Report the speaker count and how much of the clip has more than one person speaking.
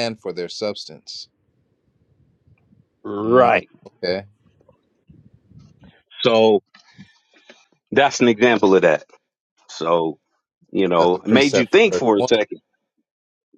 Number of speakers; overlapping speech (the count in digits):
2, about 13%